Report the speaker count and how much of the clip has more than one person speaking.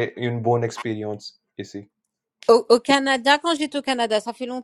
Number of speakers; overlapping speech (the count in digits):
2, no overlap